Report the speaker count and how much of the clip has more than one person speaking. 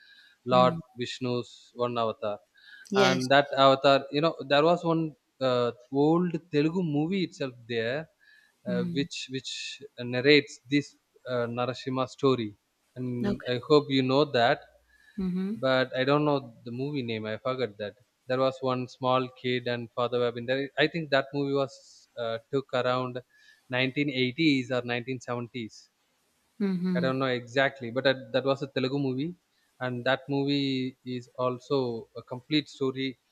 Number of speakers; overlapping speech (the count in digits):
2, about 4%